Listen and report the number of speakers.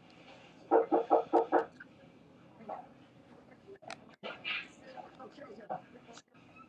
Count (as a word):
zero